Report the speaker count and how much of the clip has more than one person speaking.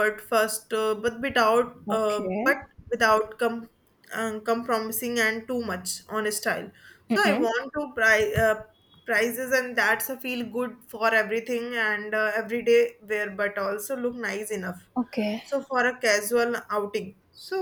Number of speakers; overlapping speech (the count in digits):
2, about 6%